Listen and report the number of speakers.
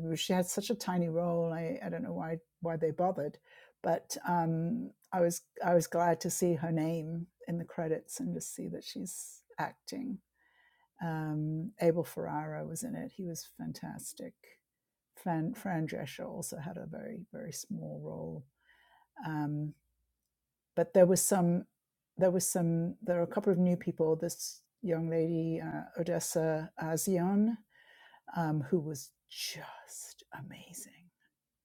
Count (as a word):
one